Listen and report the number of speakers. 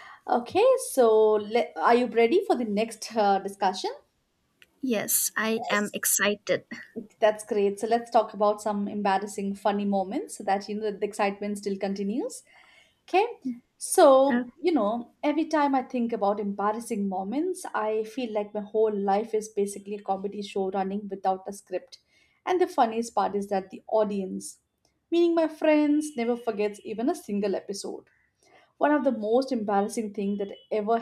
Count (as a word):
two